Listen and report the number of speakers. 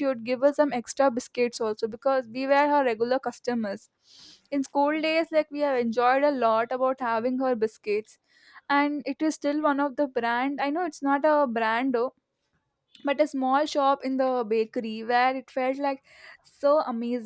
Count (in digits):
1